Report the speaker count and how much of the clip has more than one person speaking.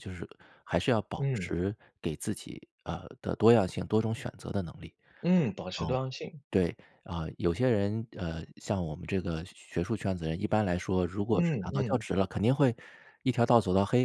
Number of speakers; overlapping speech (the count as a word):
two, about 8%